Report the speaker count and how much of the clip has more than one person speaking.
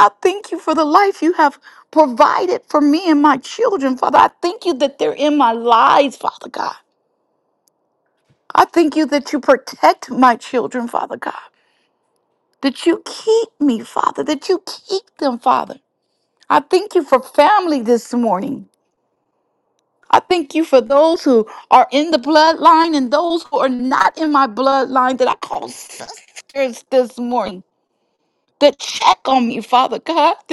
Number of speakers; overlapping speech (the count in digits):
1, no overlap